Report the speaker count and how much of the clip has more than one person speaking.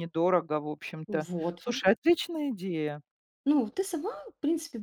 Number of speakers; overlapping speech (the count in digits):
2, about 7%